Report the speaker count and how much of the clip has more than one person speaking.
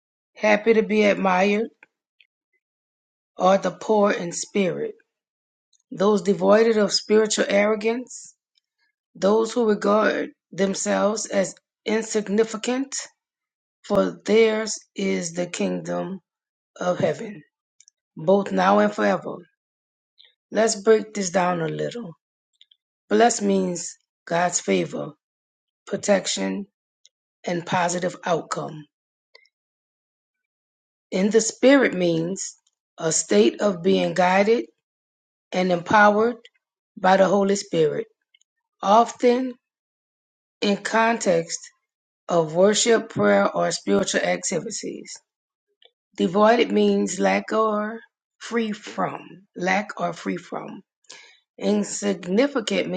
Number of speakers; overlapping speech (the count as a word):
one, no overlap